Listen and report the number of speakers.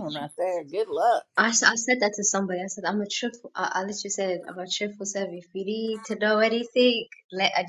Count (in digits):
2